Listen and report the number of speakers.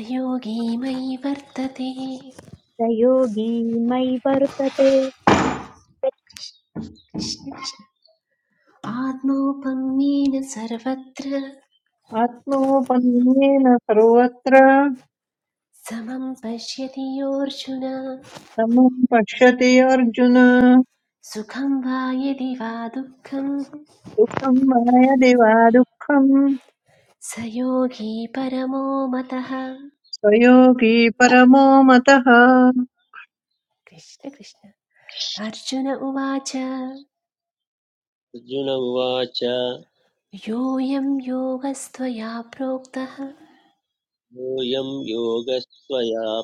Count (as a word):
four